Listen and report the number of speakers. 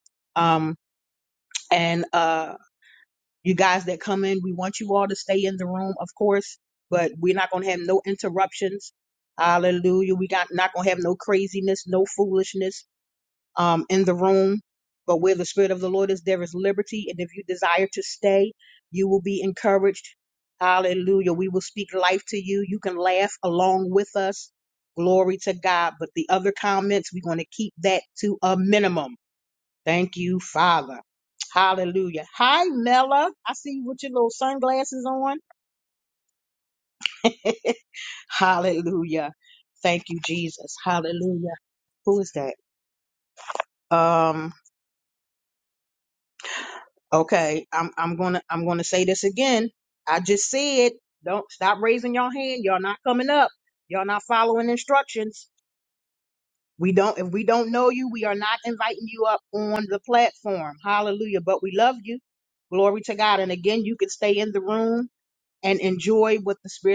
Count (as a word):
one